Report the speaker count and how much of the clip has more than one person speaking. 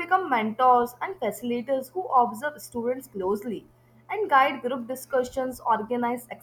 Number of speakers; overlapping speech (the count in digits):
1, no overlap